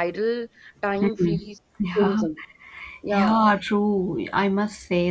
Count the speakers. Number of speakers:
2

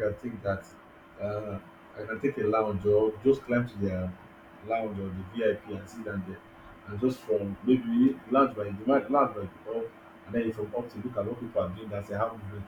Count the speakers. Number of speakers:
1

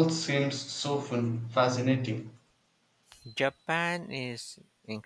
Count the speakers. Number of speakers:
2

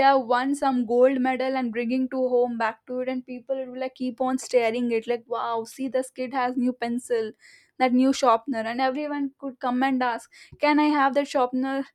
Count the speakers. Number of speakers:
1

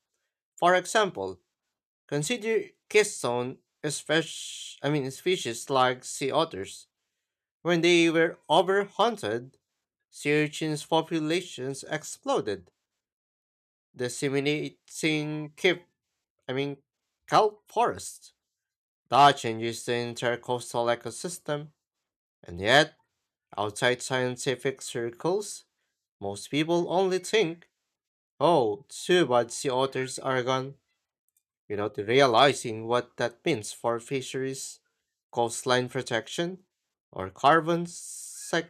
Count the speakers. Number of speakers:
1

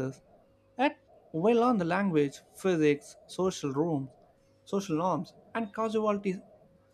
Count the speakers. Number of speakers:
1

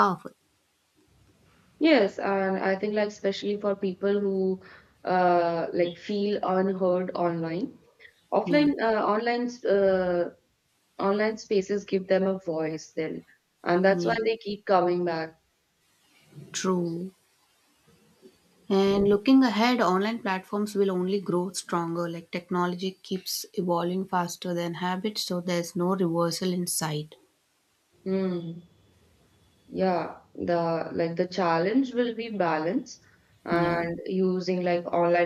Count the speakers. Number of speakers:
2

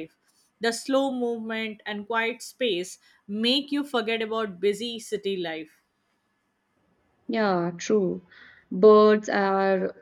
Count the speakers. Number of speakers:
2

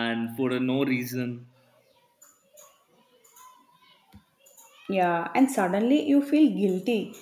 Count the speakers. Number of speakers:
2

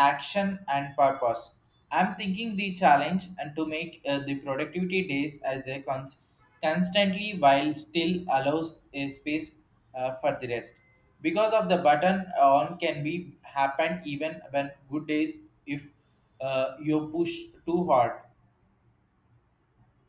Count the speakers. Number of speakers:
1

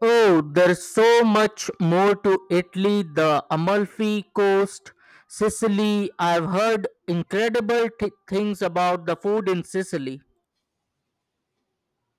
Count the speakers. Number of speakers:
1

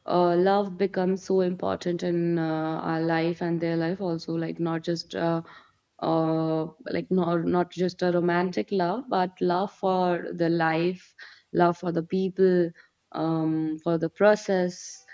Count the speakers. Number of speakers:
1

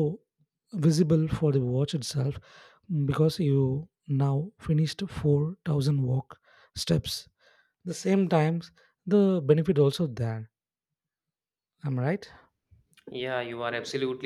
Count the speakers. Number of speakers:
2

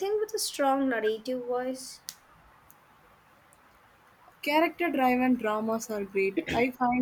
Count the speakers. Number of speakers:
2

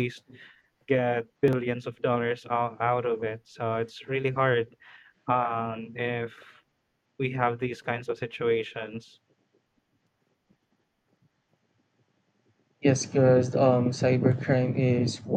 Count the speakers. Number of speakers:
2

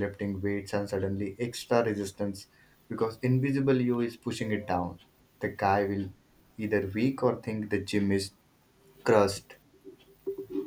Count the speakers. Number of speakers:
1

